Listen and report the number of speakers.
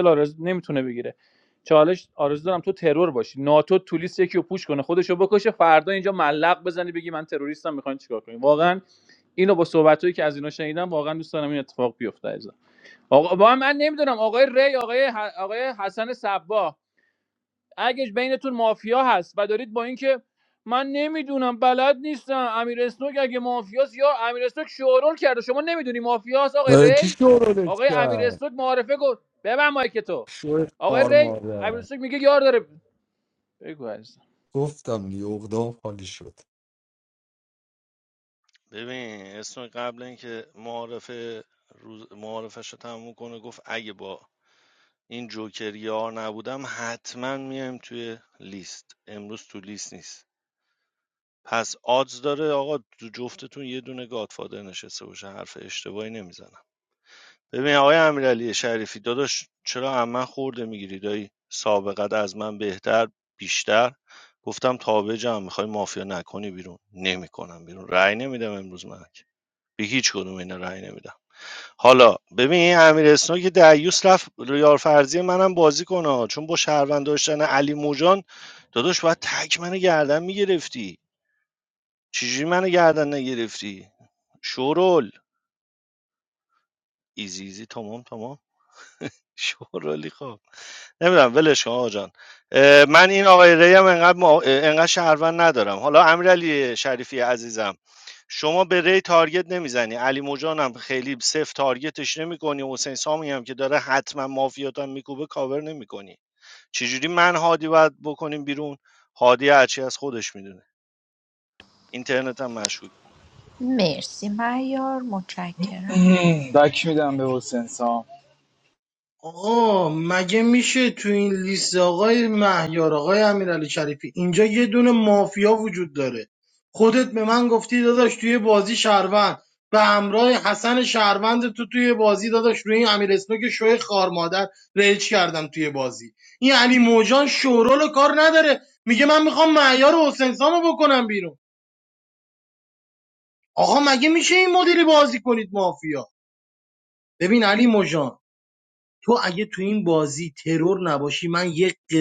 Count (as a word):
six